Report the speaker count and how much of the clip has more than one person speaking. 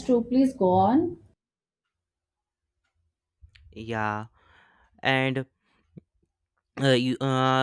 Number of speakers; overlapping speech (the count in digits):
2, no overlap